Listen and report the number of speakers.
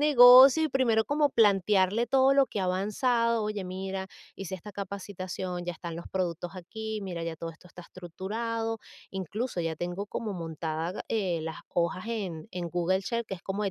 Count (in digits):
1